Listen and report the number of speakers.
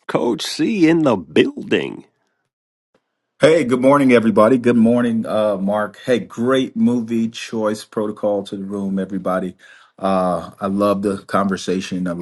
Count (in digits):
2